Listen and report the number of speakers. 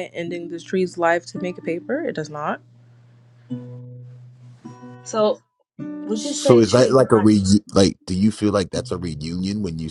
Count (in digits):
3